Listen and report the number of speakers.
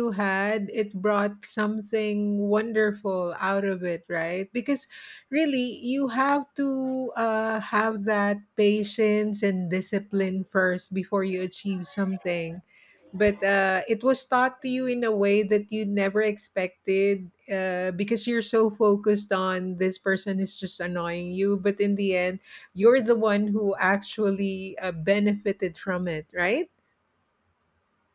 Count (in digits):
1